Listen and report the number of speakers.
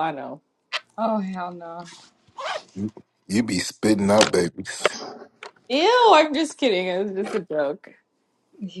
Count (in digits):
3